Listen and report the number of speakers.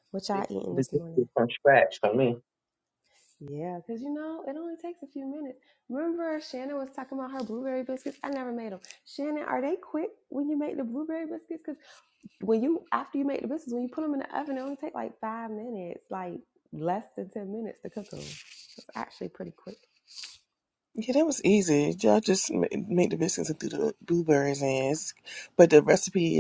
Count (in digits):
3